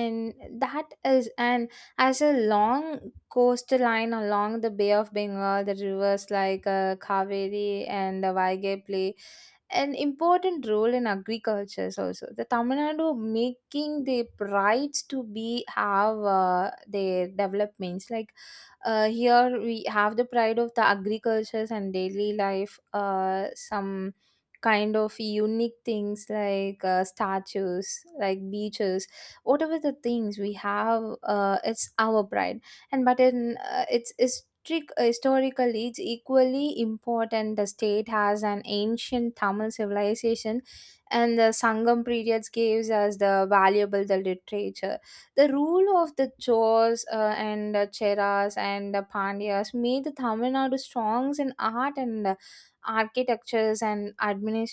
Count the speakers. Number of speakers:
1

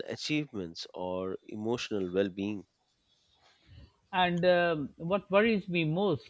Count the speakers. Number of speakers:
2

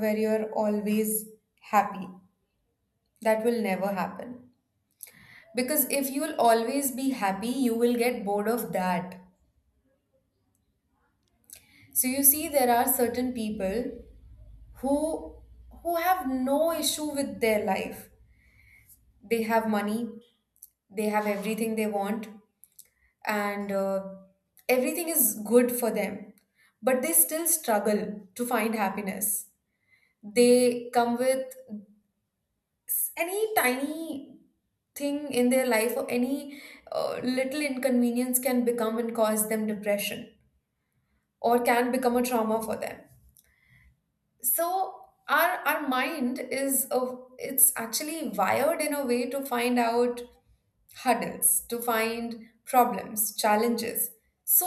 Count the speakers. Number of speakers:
1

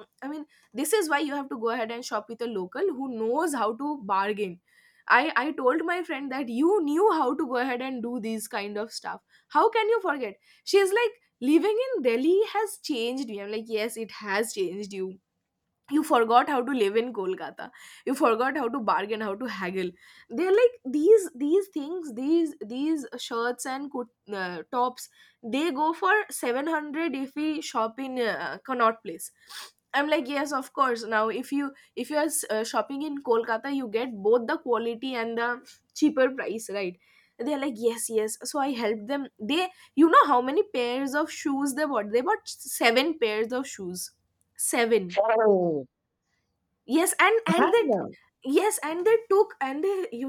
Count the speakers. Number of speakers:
2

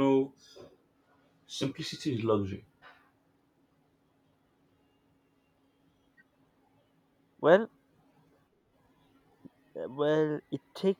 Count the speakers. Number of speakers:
2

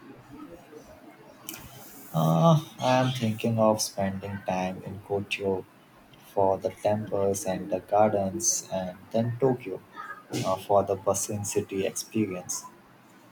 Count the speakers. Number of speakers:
1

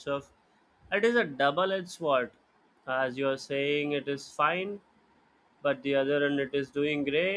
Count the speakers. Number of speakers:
1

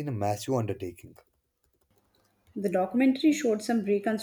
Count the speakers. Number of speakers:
2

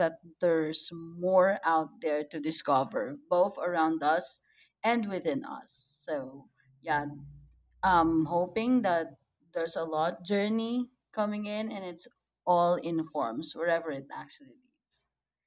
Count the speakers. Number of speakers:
1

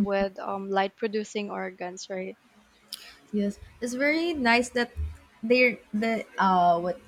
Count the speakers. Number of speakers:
2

